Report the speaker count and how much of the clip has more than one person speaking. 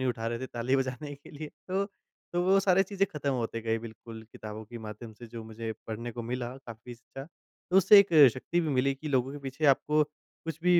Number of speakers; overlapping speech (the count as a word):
one, no overlap